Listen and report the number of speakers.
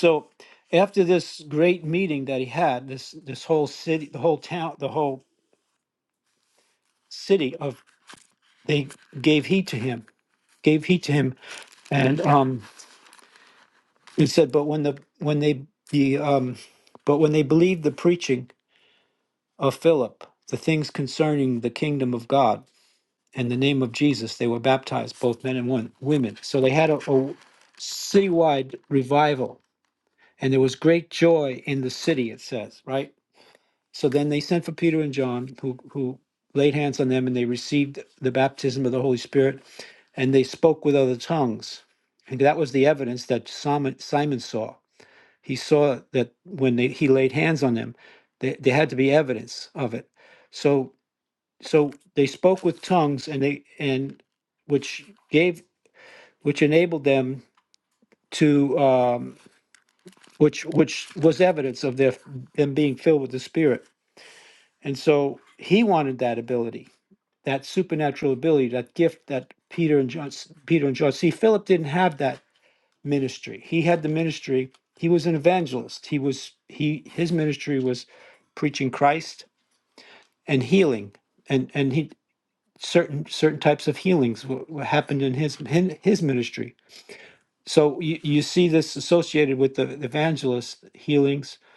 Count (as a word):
one